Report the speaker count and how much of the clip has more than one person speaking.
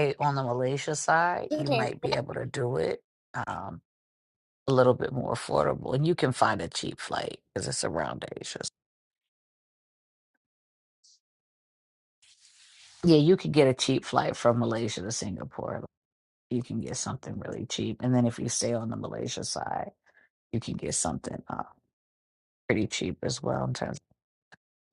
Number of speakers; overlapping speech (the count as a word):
one, no overlap